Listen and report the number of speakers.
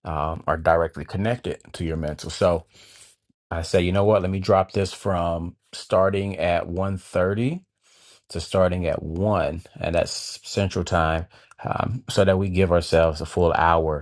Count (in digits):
1